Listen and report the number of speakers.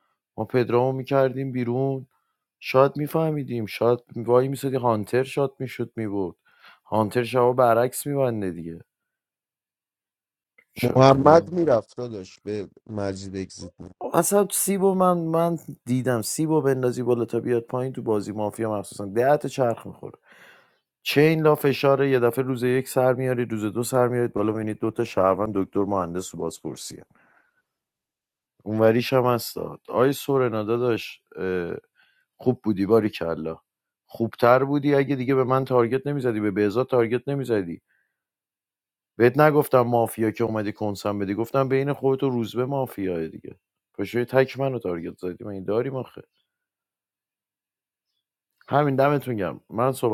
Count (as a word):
two